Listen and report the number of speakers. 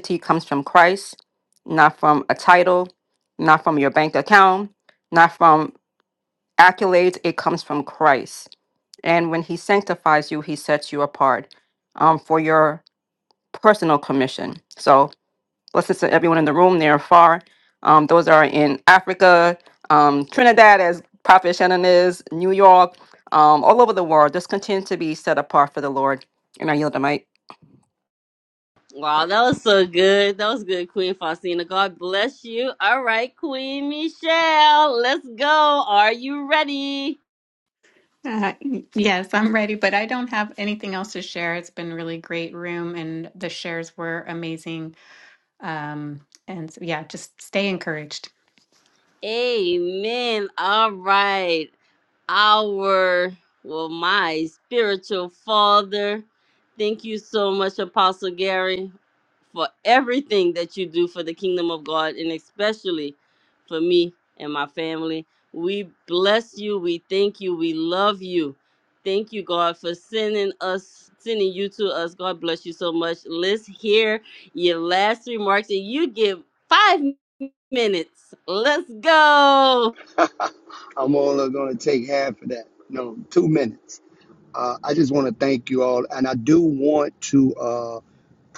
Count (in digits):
4